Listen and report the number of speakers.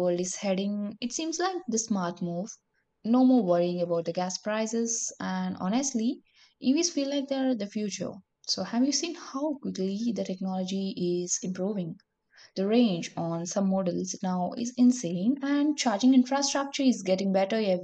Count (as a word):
one